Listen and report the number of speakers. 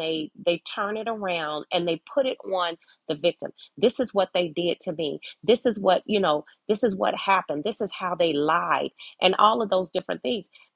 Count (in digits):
1